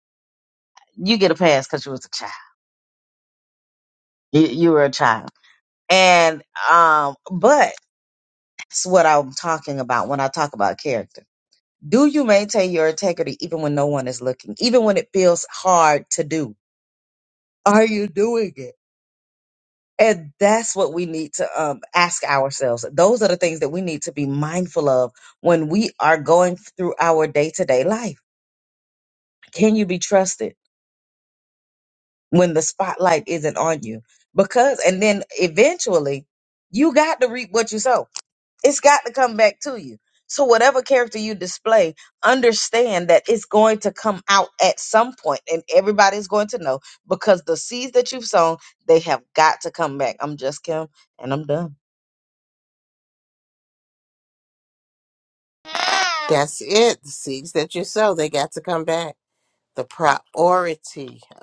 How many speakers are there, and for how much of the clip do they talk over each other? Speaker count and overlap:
two, no overlap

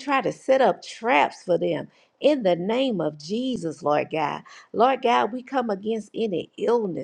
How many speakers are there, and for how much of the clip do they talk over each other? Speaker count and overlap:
one, no overlap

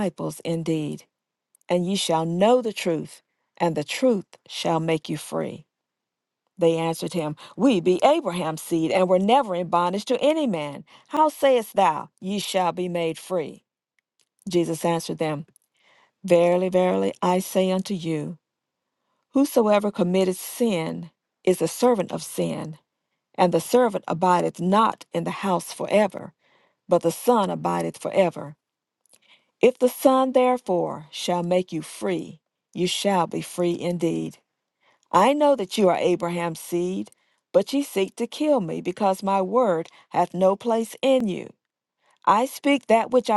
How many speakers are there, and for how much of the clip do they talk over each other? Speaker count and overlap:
one, no overlap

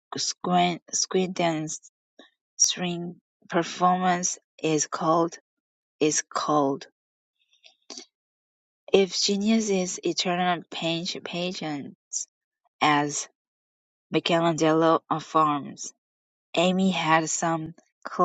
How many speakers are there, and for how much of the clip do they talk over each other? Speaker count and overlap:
one, no overlap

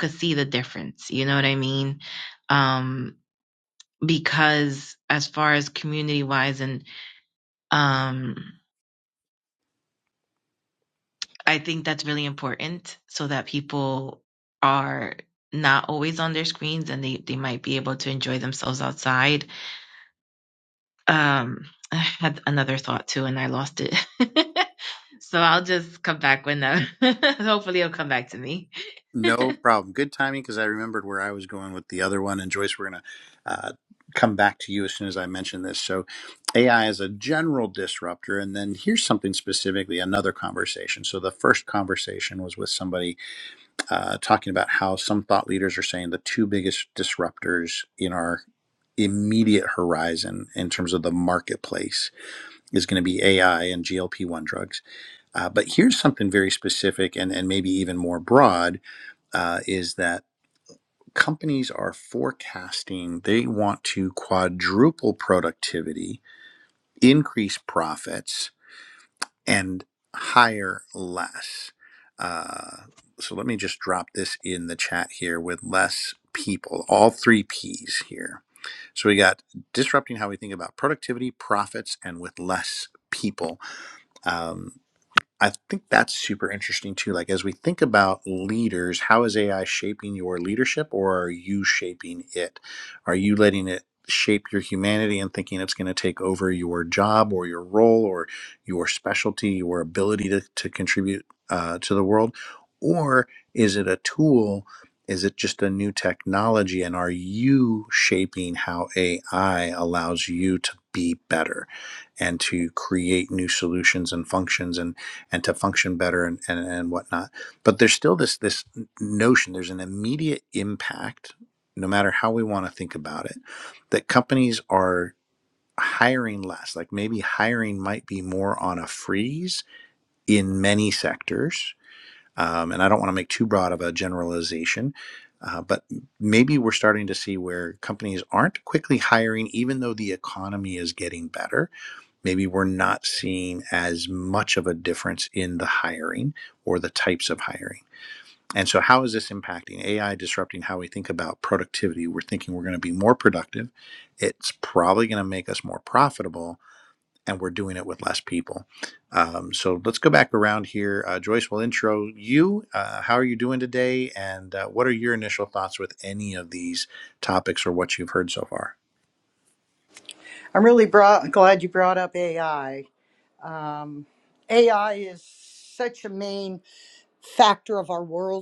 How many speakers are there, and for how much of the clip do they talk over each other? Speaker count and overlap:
three, no overlap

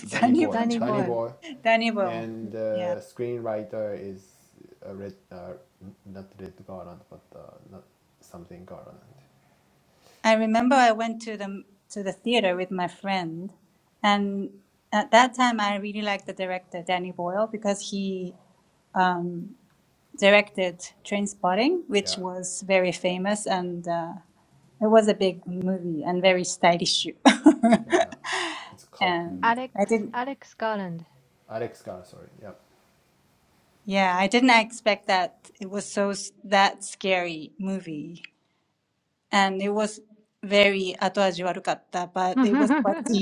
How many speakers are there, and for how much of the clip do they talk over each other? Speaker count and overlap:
three, about 6%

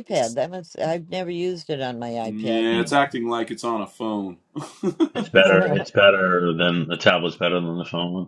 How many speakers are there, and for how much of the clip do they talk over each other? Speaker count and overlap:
three, about 5%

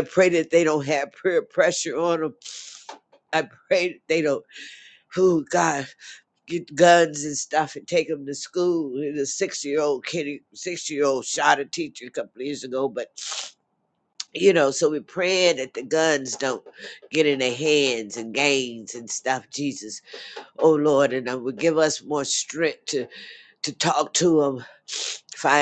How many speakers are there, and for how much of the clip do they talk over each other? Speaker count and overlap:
one, no overlap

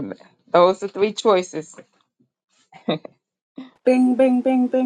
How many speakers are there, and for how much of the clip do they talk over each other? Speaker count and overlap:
two, no overlap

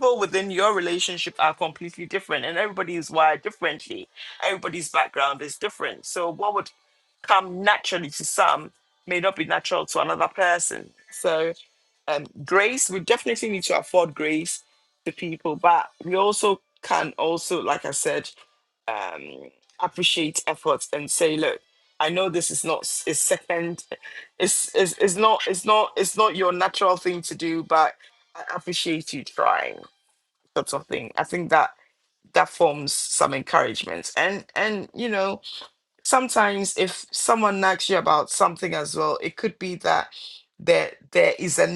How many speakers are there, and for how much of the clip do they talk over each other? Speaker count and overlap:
one, no overlap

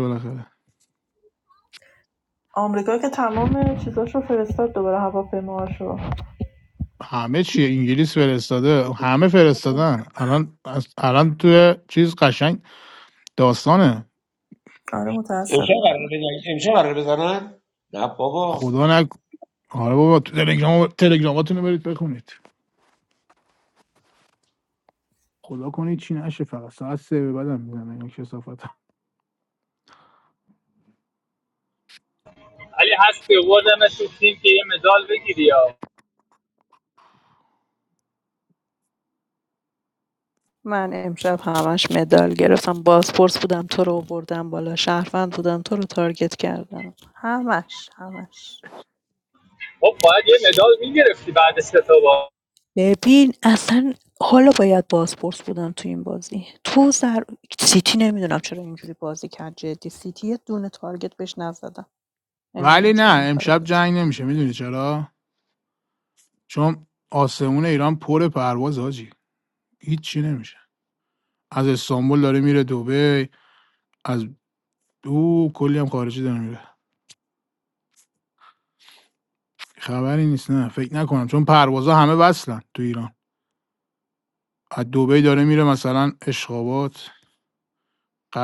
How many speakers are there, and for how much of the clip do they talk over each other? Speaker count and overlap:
five, about 2%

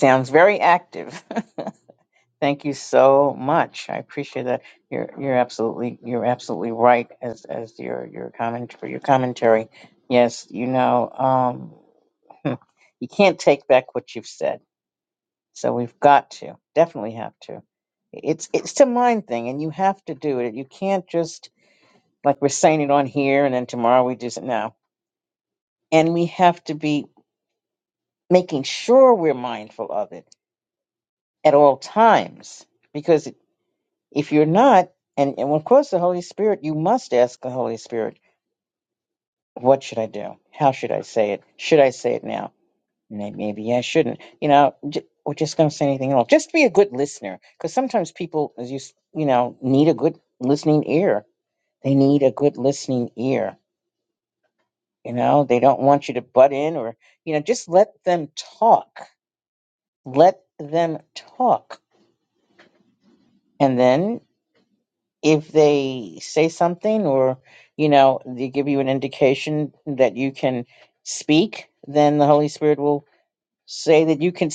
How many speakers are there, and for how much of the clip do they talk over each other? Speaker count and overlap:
one, no overlap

